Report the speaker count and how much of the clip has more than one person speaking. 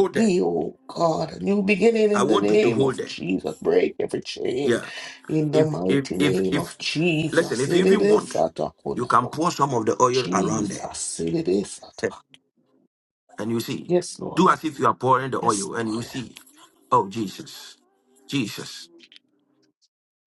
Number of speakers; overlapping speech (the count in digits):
2, about 29%